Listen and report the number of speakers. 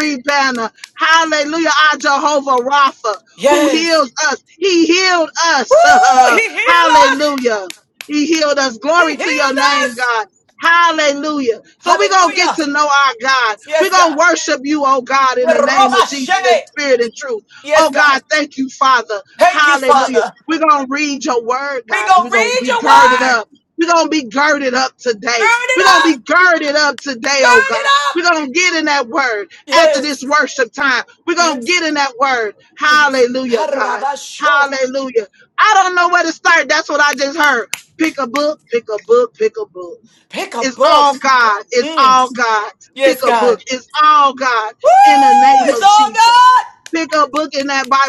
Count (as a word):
two